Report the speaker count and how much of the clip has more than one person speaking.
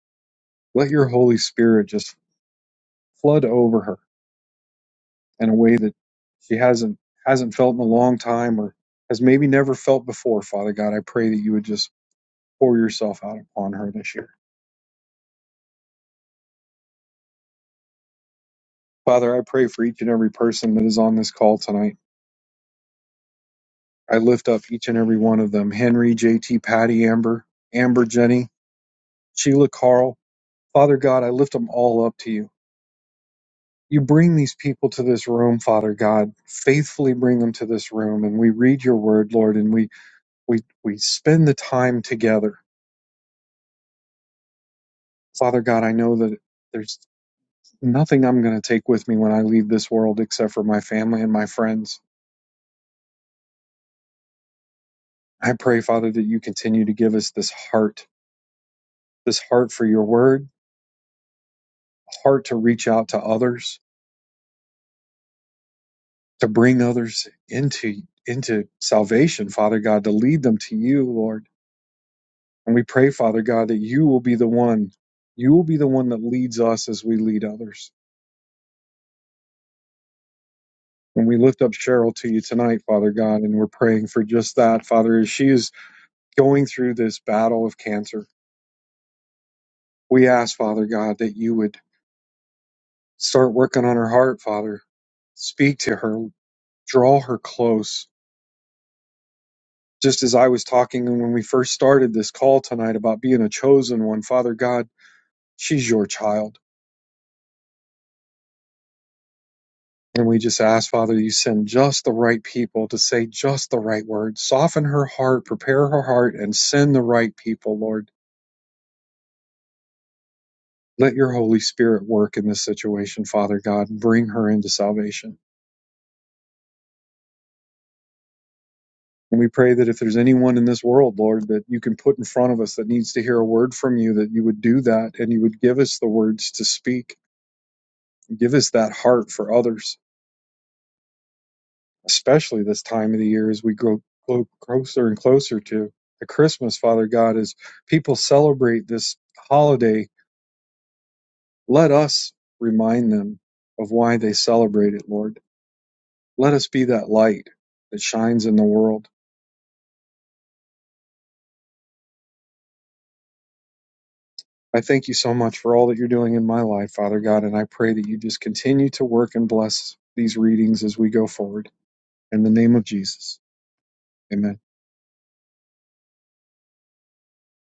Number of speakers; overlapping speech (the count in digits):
1, no overlap